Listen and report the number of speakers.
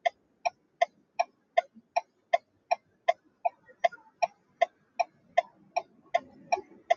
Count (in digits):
0